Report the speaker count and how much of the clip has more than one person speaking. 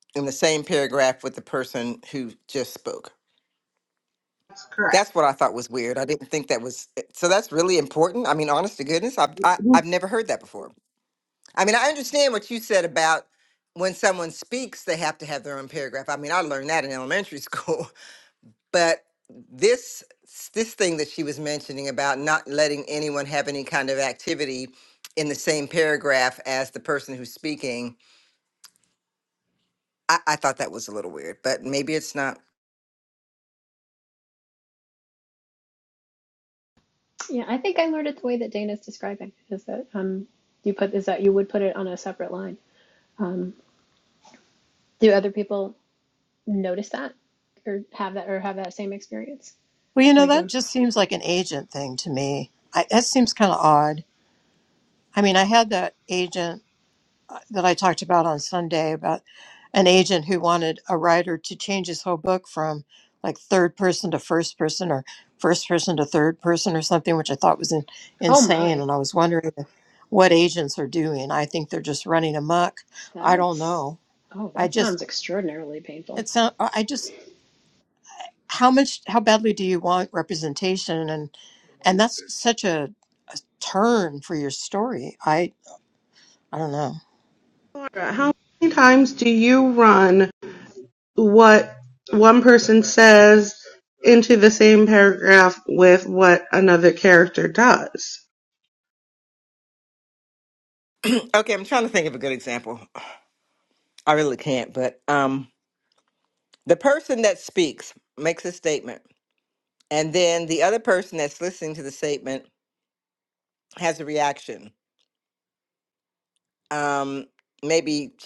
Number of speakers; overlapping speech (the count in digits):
4, about 2%